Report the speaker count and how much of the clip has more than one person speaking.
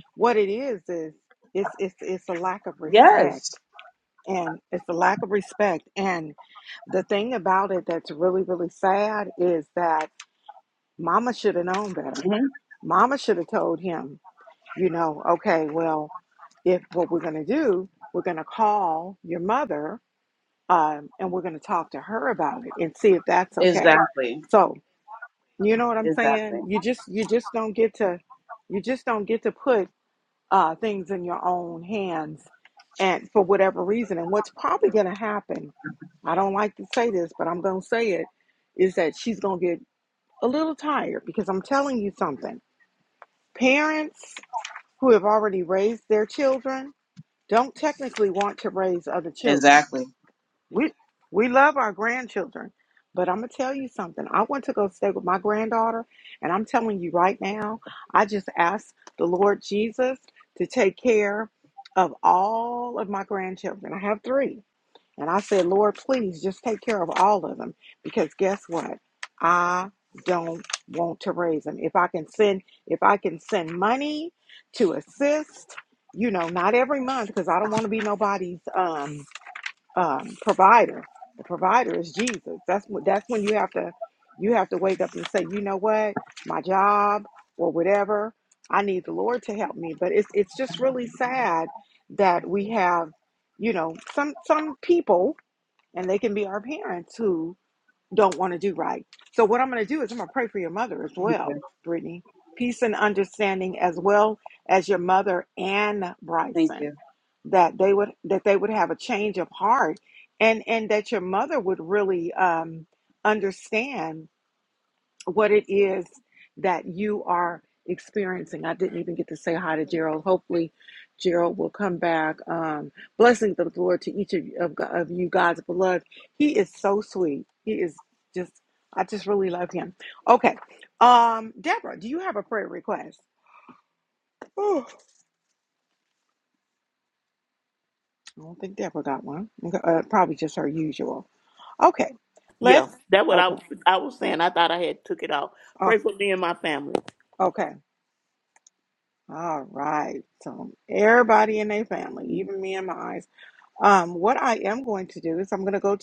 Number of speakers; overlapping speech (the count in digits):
3, about 2%